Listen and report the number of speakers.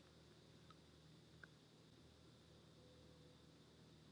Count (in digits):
0